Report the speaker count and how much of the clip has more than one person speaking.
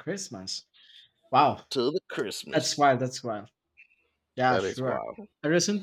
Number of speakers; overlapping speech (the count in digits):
2, about 12%